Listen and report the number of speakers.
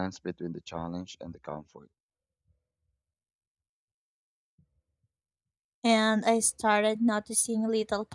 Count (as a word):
two